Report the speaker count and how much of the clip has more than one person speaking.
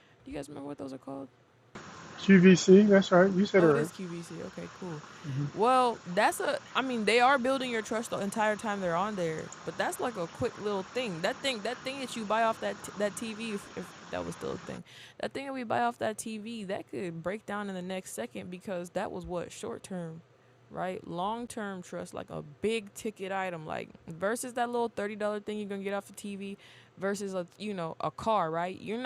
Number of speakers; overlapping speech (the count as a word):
two, about 1%